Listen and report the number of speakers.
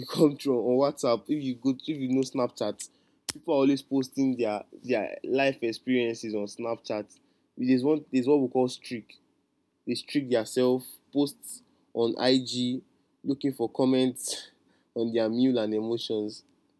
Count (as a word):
one